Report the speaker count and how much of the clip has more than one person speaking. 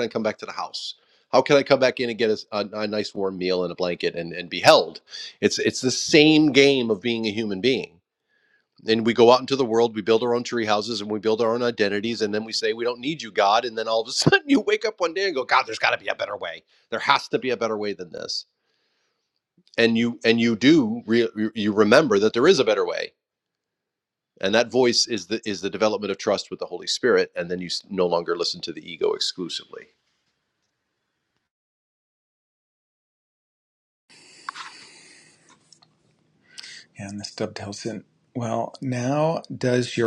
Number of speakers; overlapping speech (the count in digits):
2, no overlap